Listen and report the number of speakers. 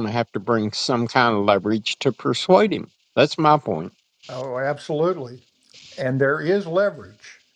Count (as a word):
two